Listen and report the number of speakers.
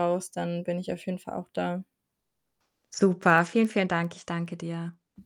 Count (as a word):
two